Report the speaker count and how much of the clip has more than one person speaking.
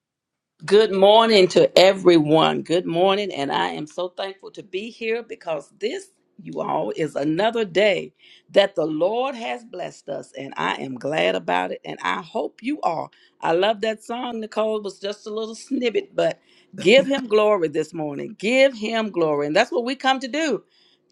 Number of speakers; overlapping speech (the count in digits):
1, no overlap